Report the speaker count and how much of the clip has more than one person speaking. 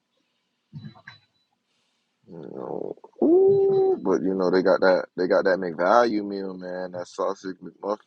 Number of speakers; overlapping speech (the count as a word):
one, no overlap